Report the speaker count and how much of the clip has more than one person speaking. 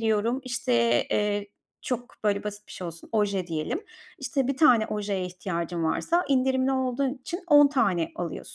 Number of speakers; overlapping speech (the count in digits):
1, no overlap